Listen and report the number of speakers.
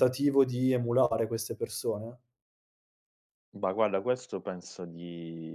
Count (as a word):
two